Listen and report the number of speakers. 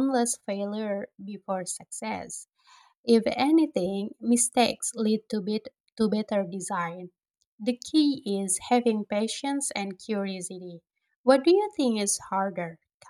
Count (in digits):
1